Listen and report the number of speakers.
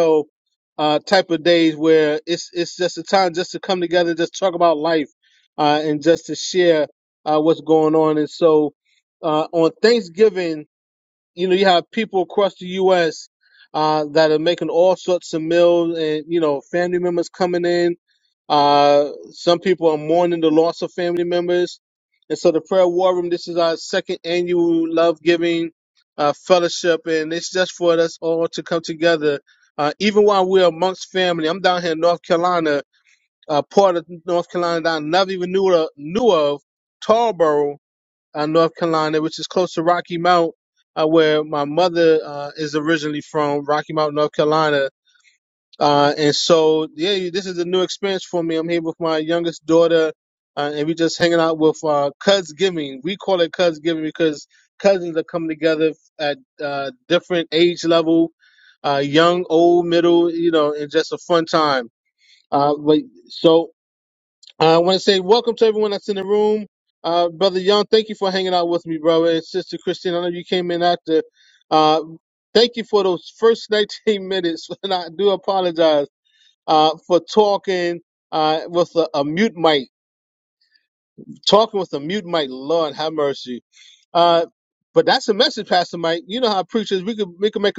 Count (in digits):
1